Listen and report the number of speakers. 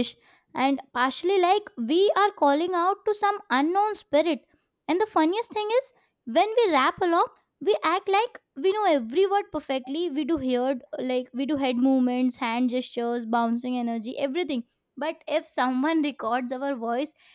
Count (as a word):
one